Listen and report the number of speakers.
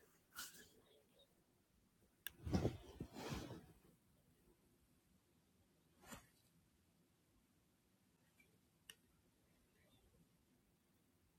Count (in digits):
0